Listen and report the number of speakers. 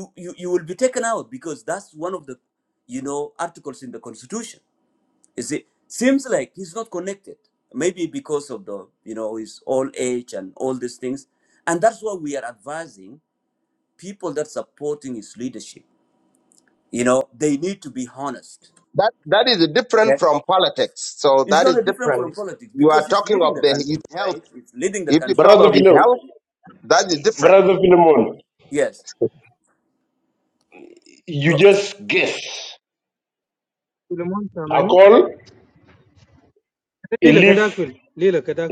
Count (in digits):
4